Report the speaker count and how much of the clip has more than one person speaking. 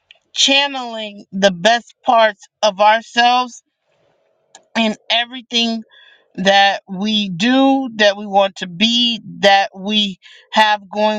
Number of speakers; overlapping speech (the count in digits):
1, no overlap